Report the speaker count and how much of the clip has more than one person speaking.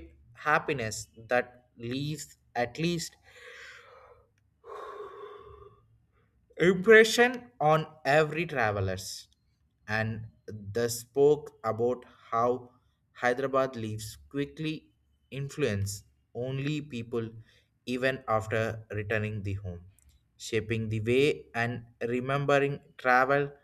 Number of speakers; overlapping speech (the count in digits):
1, no overlap